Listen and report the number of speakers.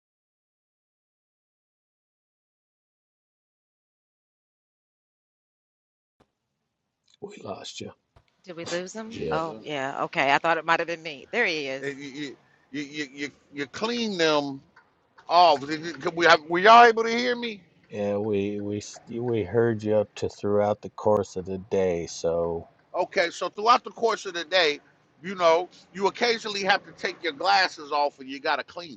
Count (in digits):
3